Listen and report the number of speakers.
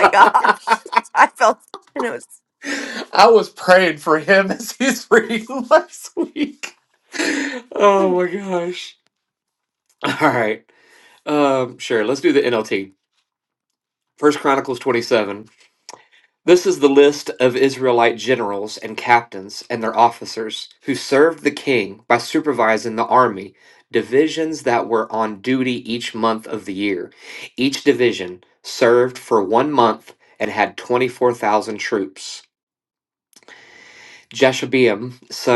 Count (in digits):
2